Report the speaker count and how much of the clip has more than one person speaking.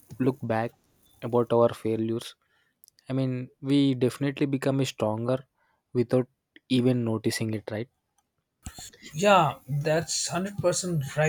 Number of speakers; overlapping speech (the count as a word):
two, no overlap